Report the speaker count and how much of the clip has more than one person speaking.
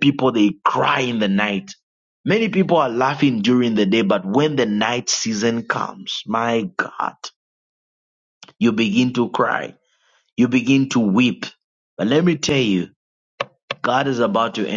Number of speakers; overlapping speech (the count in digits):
1, no overlap